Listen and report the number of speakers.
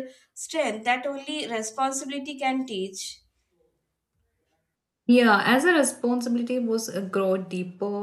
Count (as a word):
two